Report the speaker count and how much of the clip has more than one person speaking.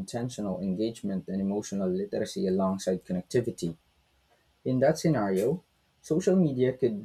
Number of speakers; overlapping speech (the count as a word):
one, no overlap